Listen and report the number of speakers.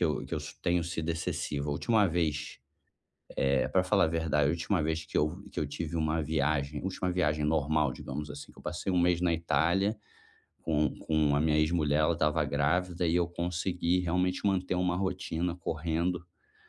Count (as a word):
one